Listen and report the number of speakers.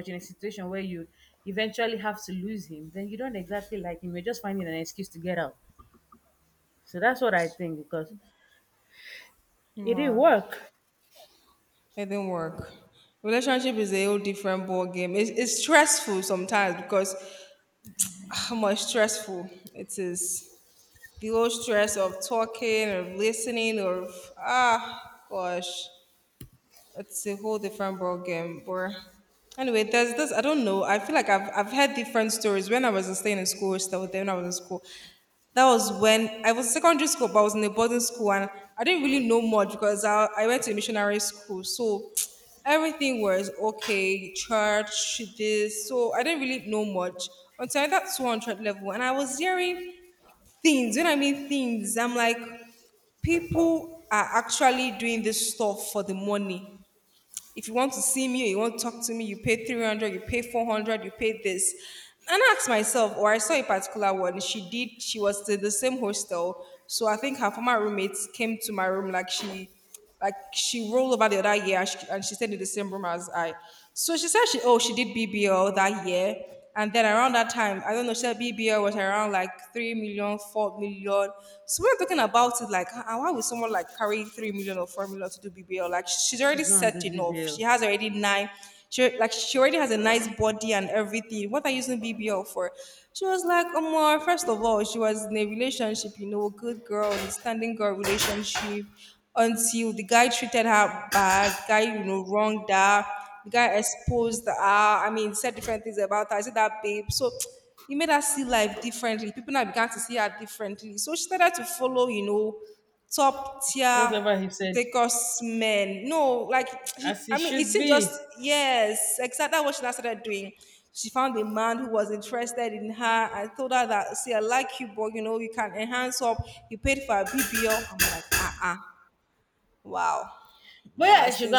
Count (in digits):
2